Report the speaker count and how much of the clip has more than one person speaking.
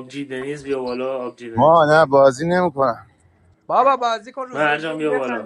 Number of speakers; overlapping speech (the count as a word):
three, about 21%